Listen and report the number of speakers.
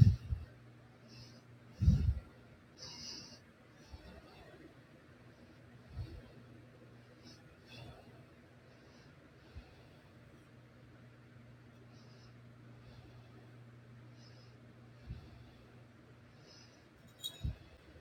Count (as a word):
zero